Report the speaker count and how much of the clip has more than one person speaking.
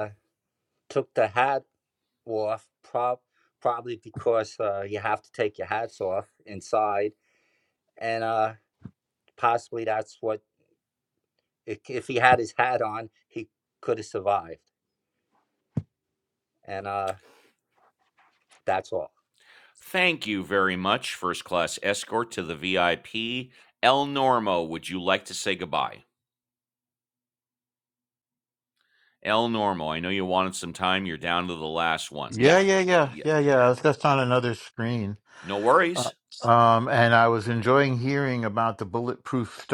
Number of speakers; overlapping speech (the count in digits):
3, about 2%